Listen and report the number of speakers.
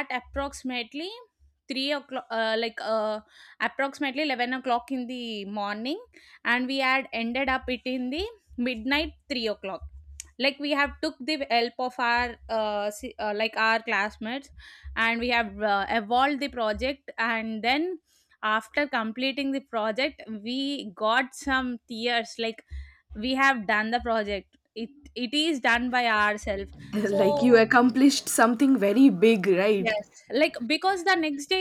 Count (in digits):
2